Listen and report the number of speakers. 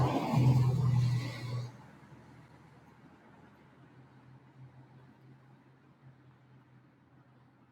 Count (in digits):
0